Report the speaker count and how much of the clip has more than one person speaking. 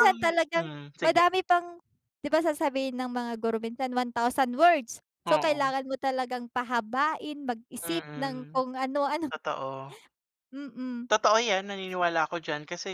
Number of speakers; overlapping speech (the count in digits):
2, about 12%